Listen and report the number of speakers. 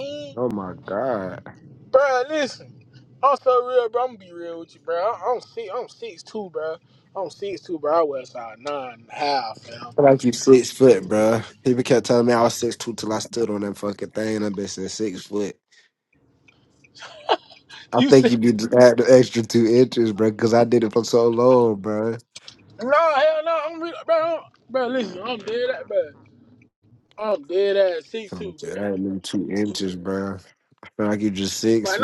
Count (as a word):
two